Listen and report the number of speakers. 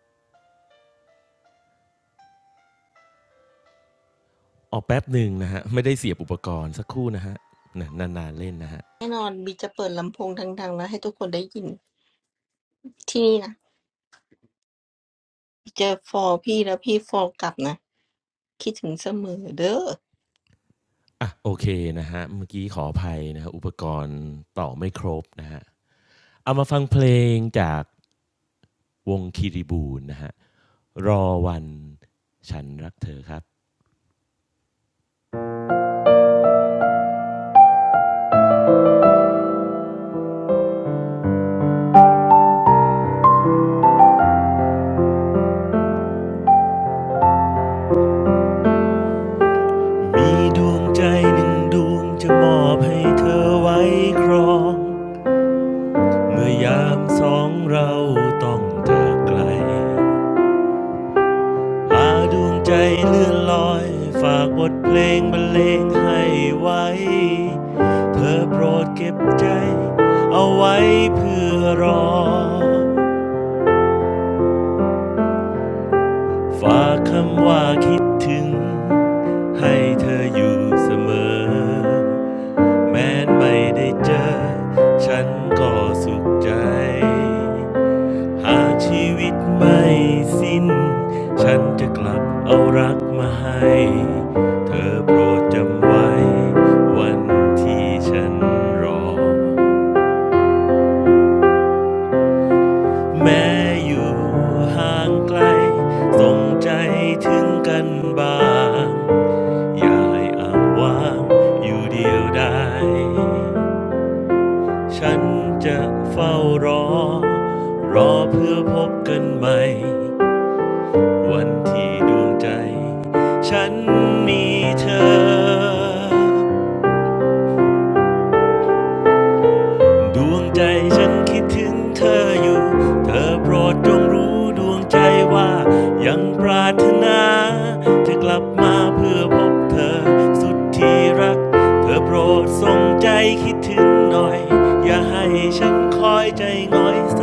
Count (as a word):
two